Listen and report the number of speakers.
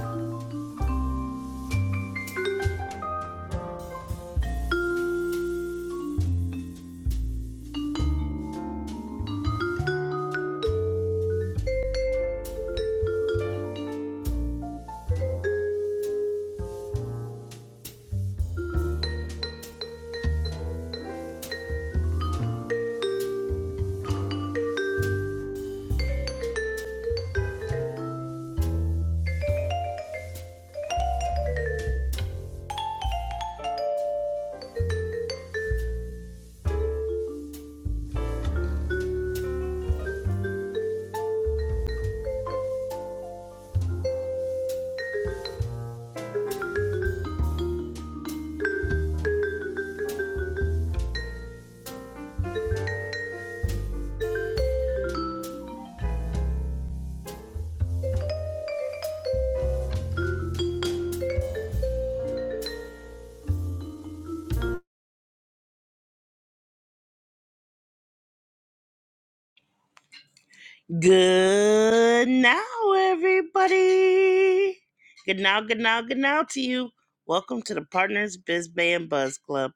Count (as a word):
one